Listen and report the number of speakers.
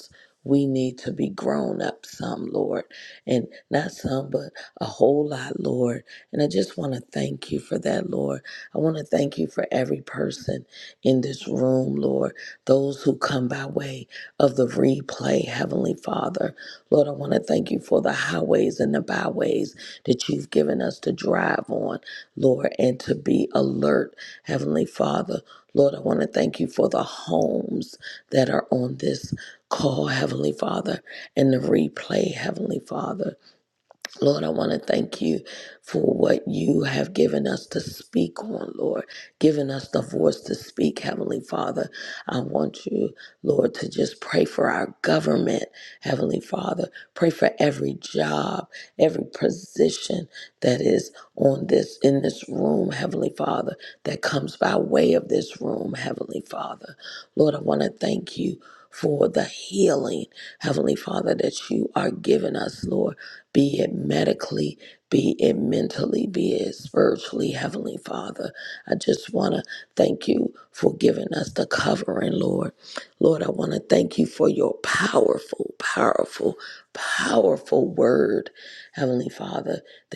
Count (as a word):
one